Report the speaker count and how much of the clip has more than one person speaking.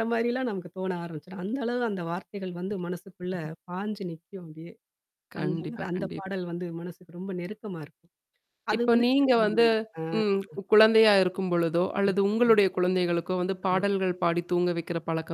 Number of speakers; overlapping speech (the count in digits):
2, about 16%